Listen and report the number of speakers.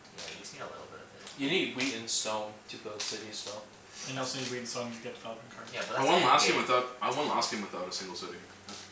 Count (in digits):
4